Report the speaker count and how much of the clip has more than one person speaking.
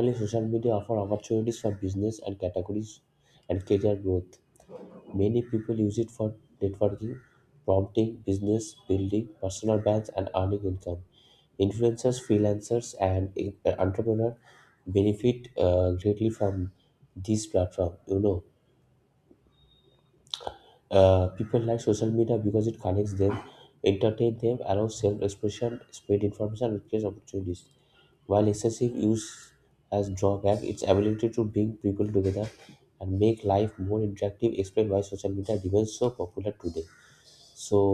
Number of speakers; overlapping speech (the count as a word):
one, no overlap